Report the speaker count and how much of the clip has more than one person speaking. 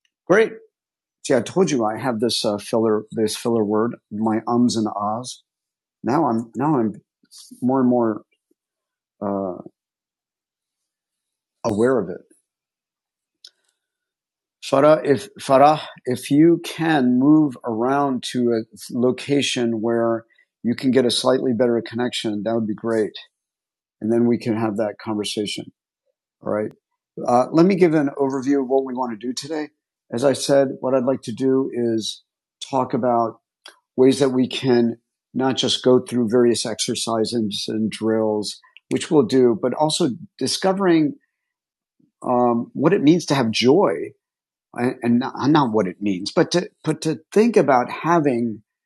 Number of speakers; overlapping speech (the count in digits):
1, no overlap